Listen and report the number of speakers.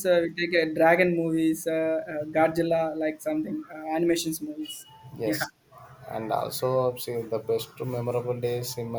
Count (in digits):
2